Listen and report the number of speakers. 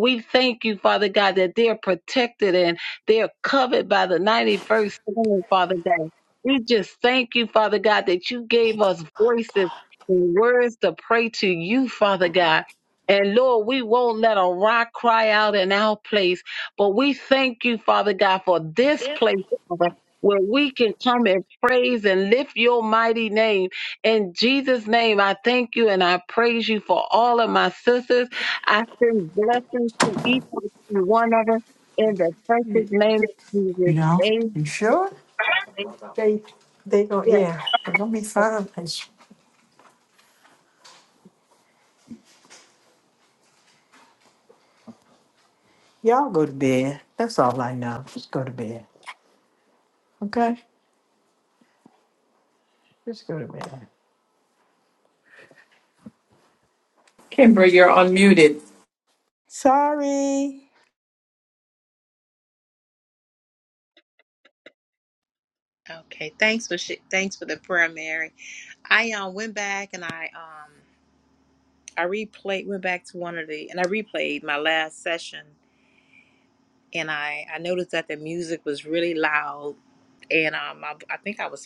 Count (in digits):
4